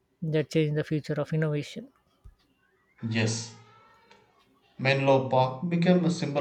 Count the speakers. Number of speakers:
2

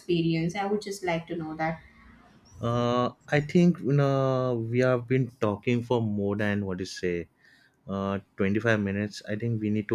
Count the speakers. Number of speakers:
2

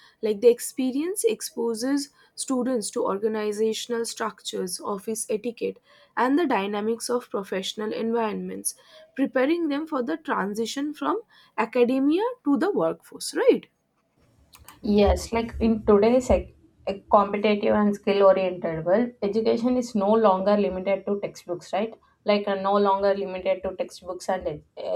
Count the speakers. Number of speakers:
2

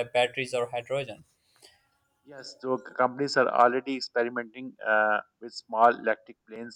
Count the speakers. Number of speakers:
2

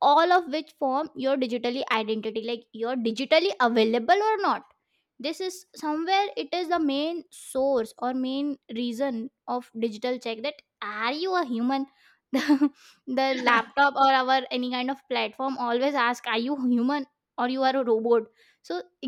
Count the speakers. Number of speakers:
1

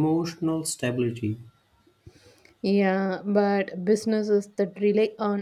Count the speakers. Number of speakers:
2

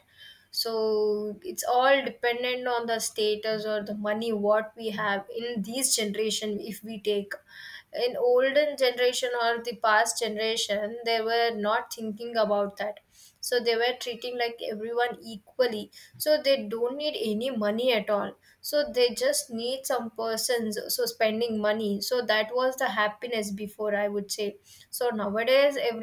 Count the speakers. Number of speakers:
1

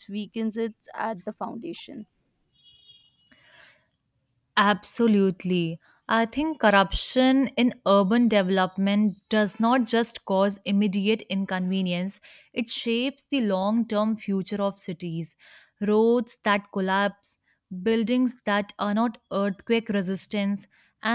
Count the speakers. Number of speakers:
2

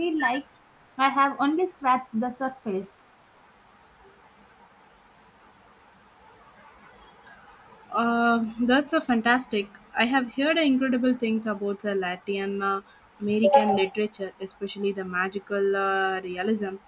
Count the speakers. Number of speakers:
2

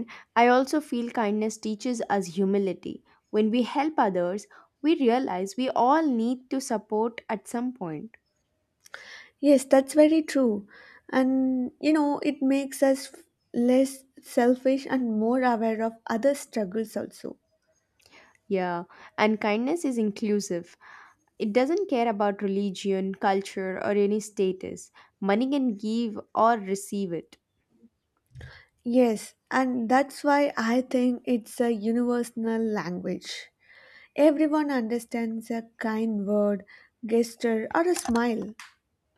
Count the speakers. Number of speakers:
2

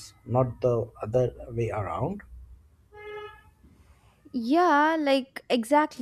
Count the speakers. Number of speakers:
2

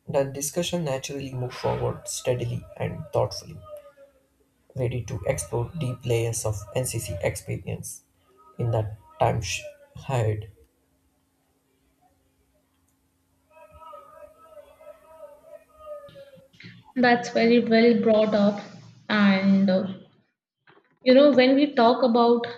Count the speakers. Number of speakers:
2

